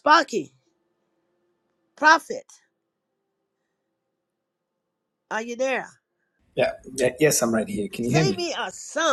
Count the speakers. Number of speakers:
two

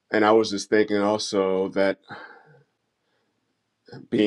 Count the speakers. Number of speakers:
one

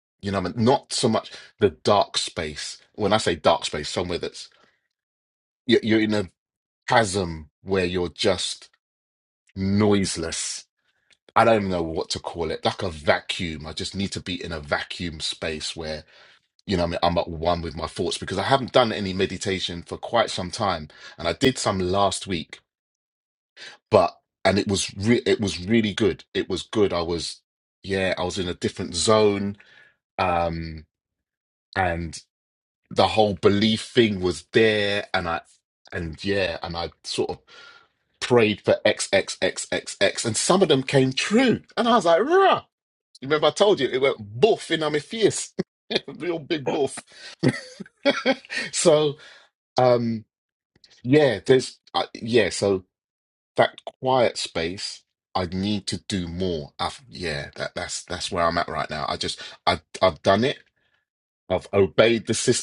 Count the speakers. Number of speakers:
one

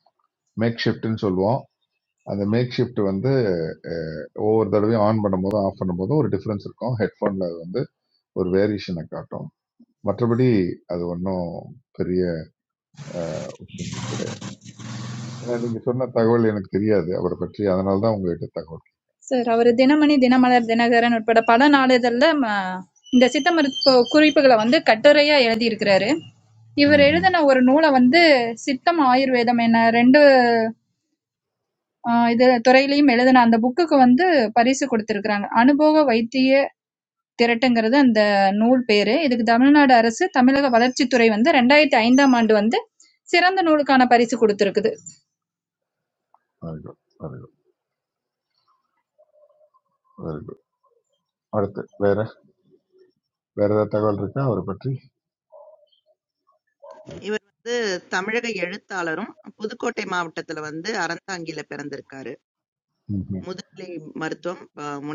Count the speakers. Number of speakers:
three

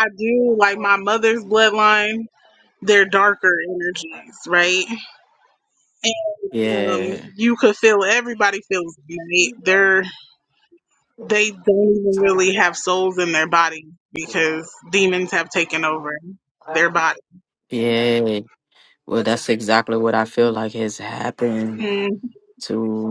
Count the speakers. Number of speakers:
two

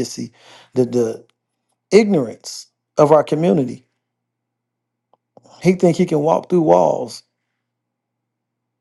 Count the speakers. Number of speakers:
one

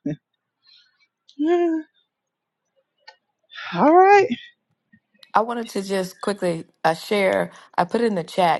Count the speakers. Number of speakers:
two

